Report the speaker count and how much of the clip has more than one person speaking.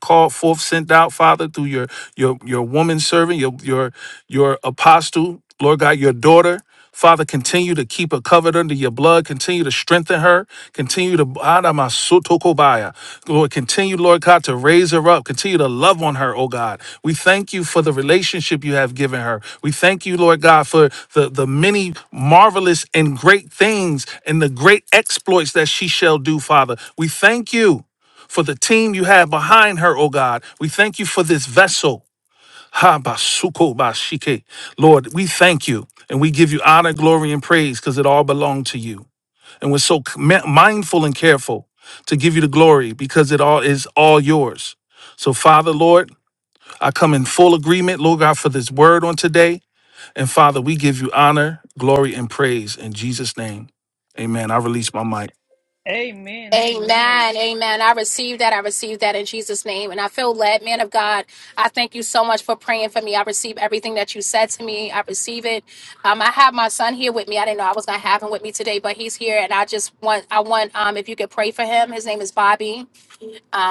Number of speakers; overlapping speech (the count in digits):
3, about 1%